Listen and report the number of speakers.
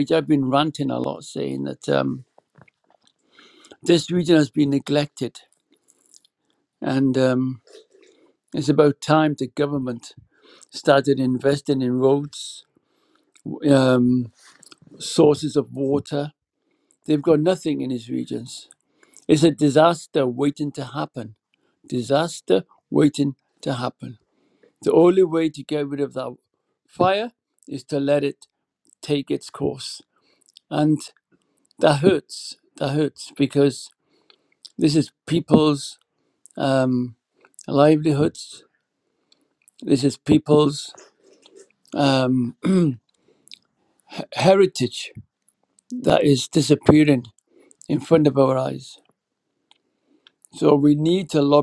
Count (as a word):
one